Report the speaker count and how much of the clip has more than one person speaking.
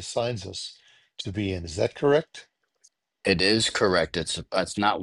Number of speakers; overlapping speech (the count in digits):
2, no overlap